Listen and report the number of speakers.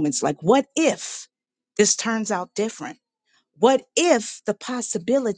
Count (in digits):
1